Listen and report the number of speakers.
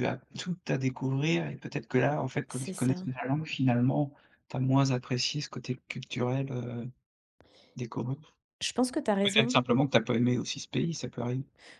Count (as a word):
two